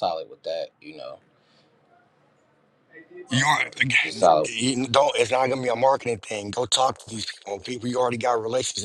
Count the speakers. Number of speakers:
two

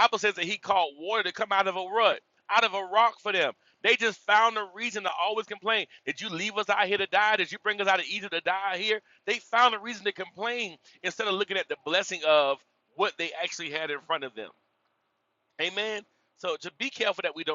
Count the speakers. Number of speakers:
one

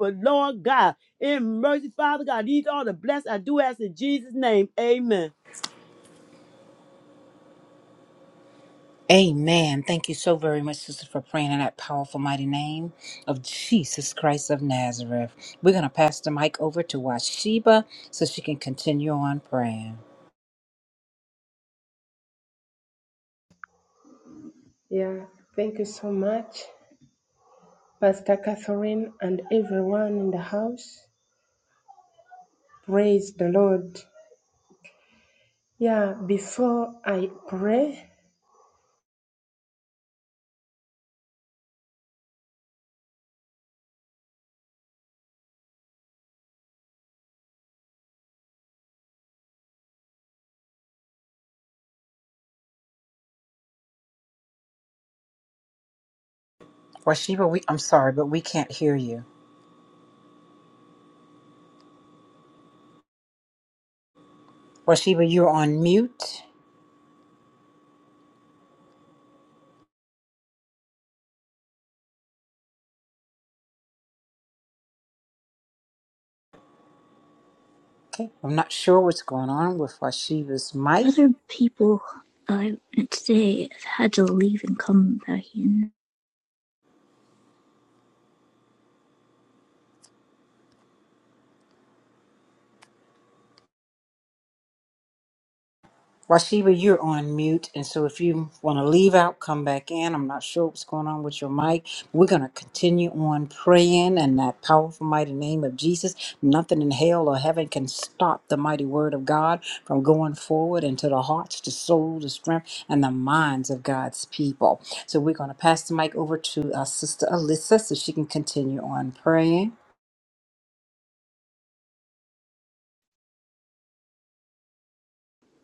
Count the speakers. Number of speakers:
four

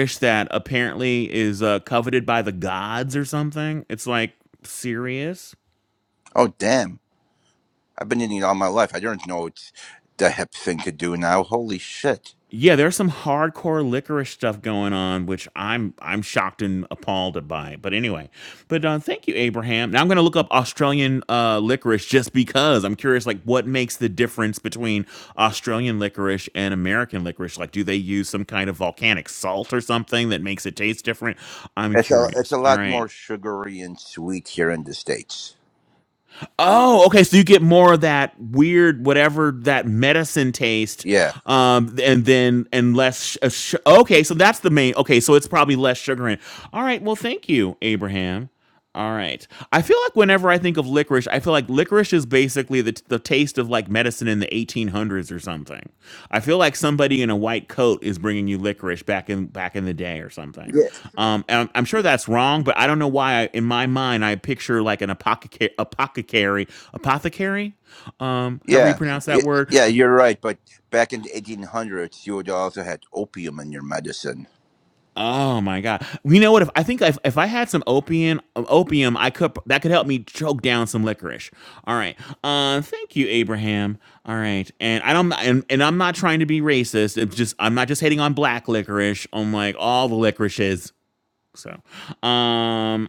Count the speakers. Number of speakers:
two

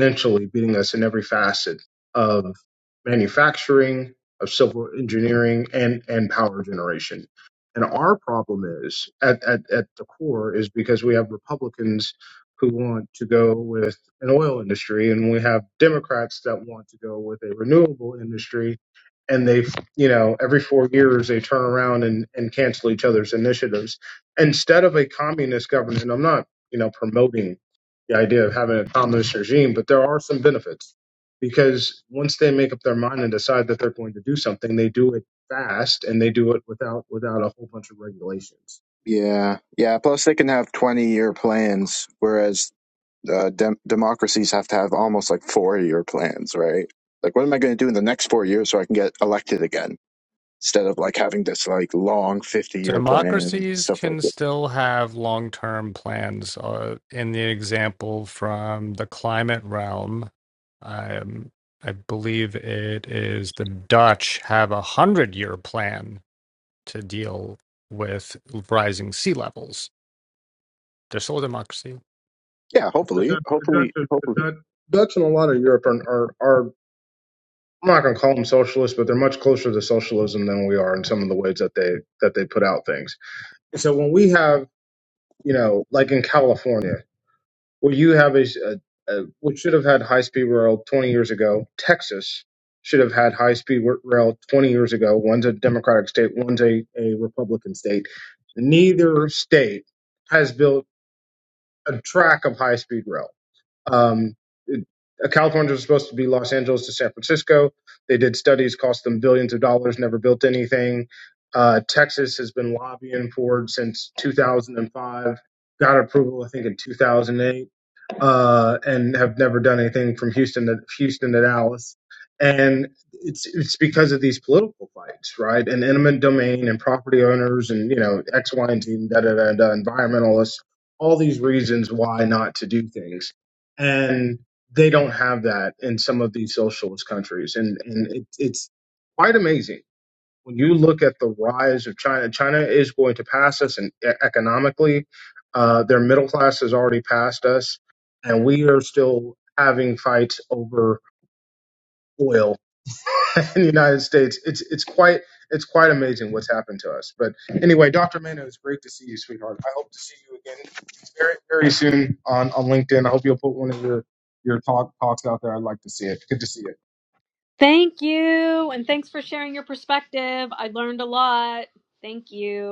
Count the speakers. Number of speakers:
four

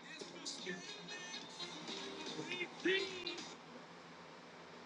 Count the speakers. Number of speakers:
zero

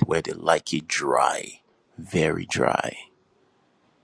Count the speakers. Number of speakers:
one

